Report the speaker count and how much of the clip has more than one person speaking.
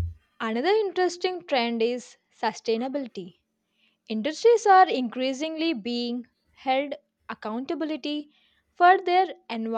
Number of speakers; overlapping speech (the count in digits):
1, no overlap